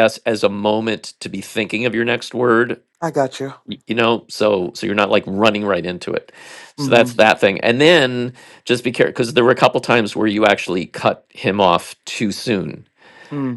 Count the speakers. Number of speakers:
2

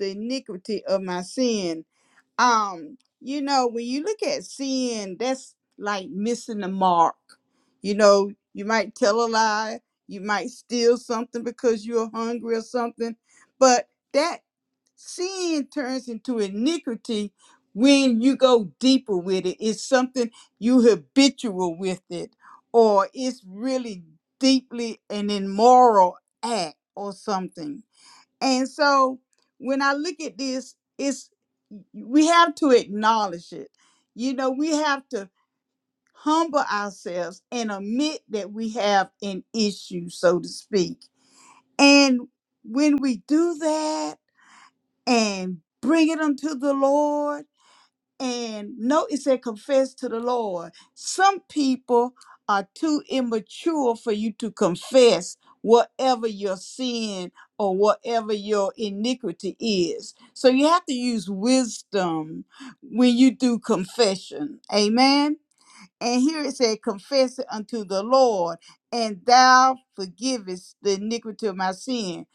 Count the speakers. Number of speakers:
1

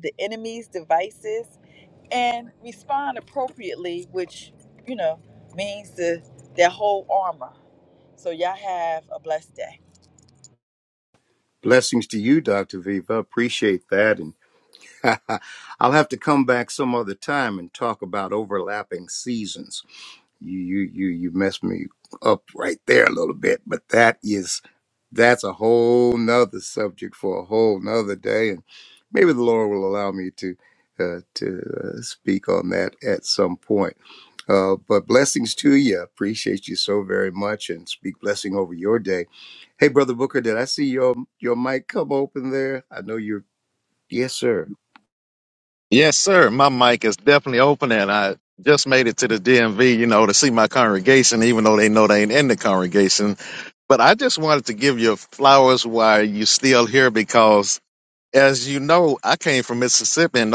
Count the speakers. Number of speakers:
3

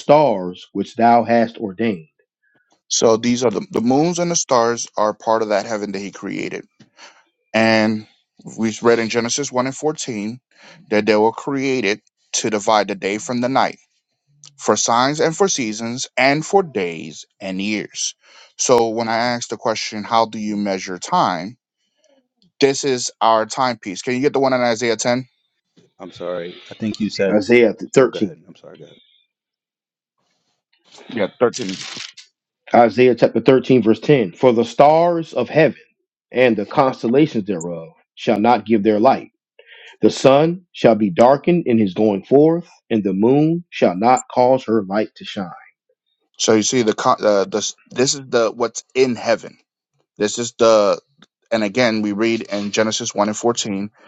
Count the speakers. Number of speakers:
3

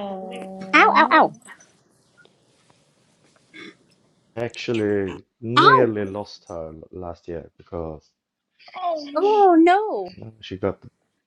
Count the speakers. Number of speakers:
3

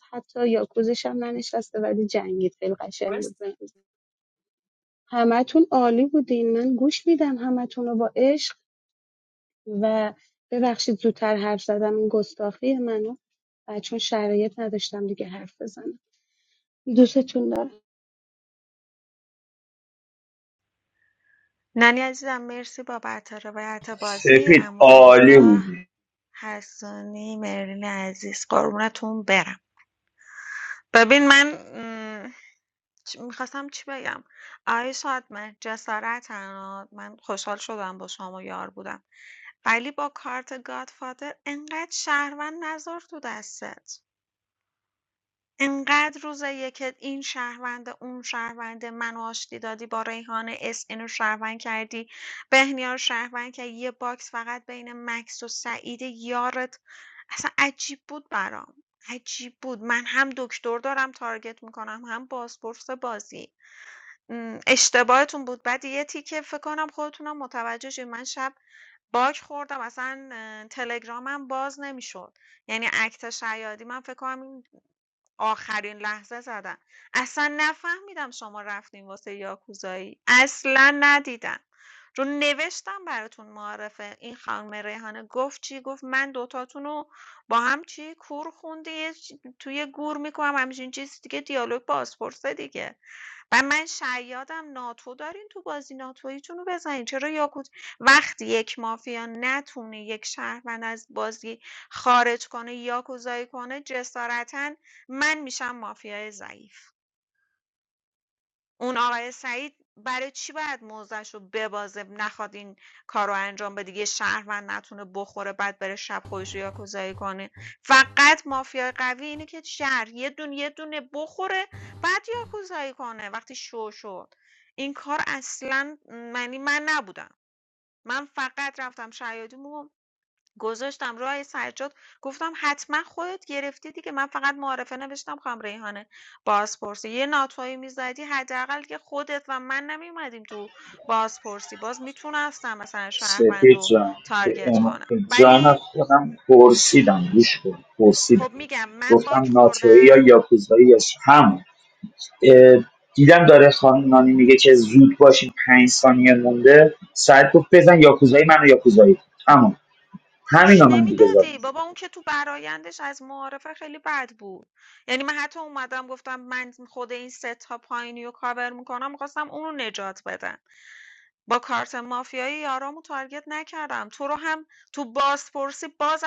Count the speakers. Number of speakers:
3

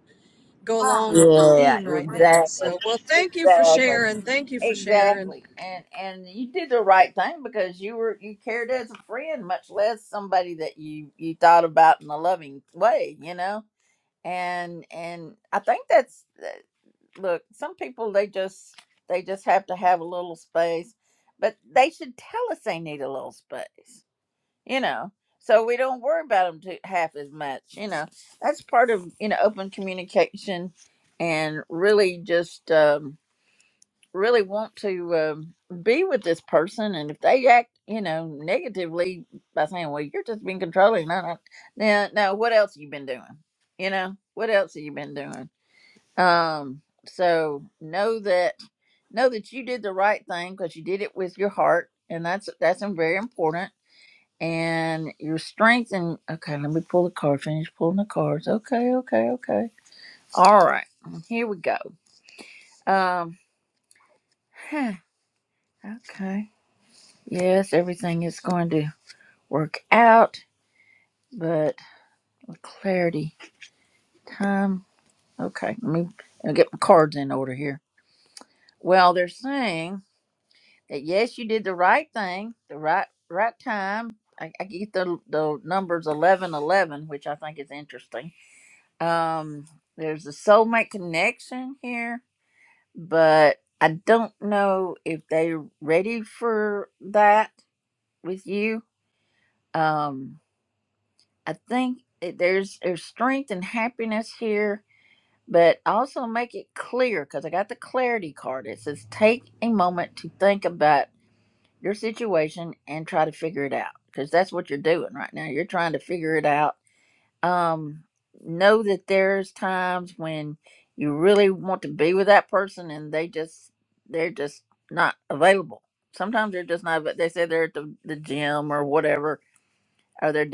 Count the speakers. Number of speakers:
2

